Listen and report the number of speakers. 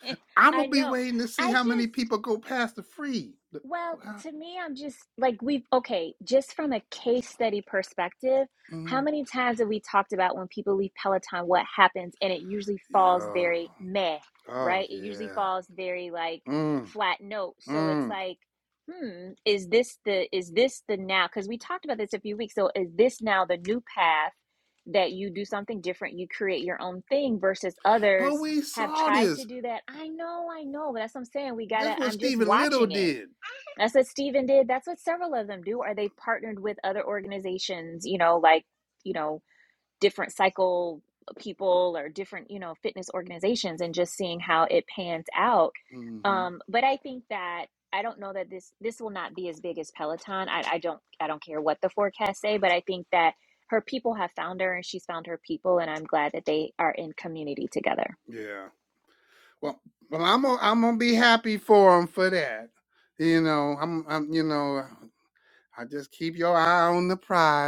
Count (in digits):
2